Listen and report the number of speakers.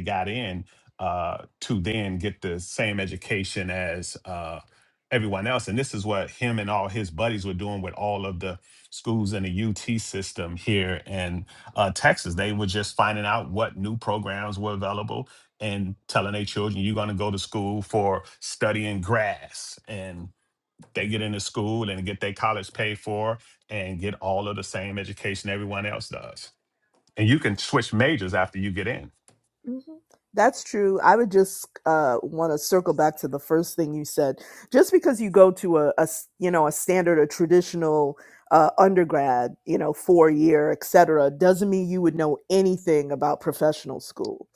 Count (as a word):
two